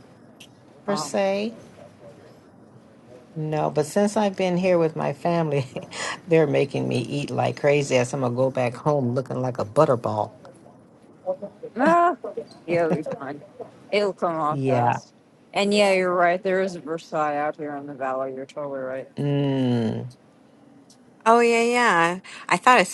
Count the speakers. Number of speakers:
3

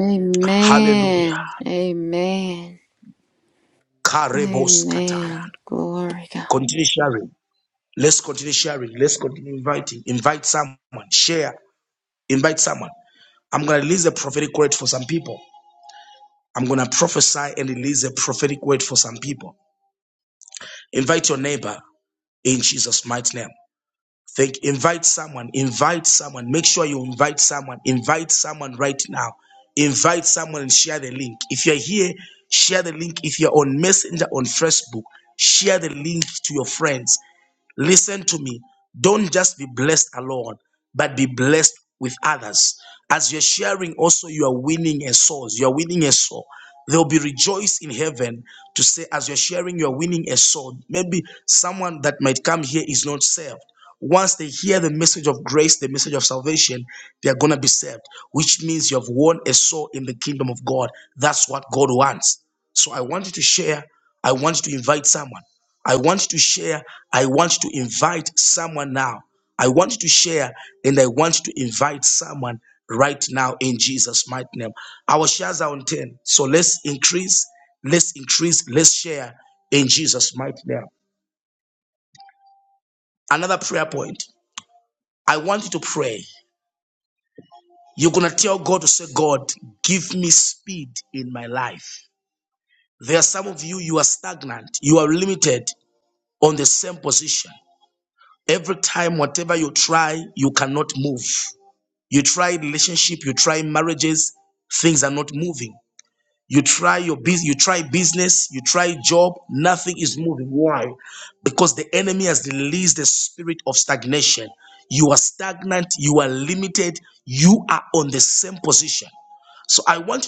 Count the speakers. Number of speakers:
2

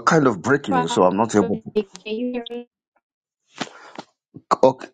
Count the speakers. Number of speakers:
2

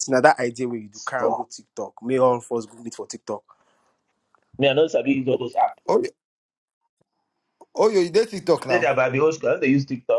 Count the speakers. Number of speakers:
3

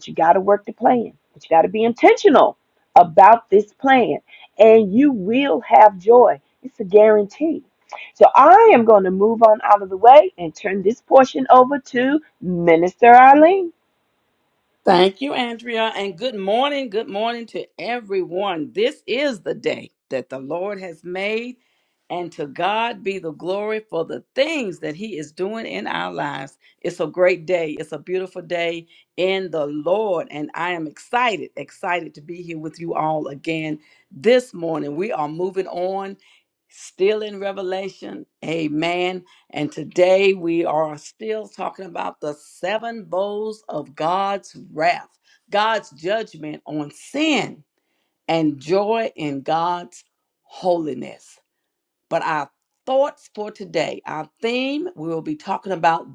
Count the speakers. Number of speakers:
2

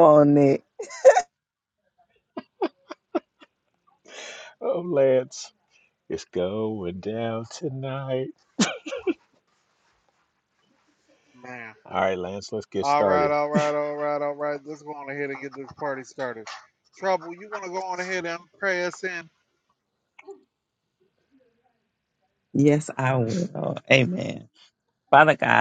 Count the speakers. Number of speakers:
3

